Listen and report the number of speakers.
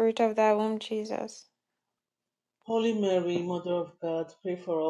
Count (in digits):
2